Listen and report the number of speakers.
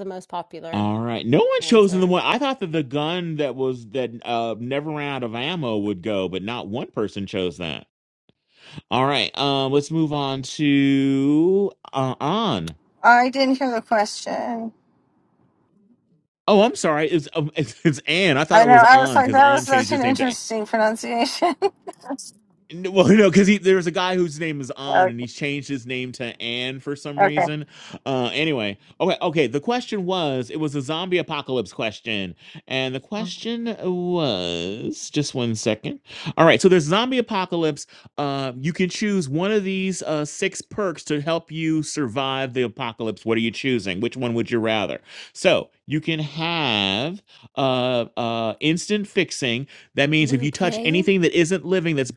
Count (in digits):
3